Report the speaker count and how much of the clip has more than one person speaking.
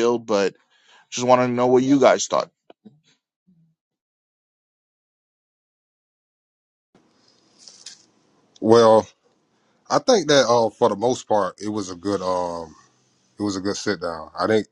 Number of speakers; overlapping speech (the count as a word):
two, no overlap